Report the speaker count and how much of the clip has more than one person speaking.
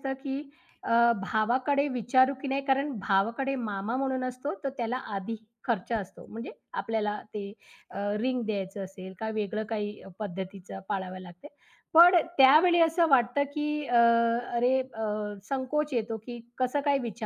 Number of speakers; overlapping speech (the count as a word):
one, no overlap